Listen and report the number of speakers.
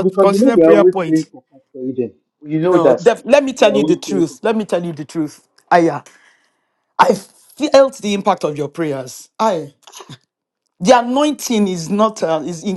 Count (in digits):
2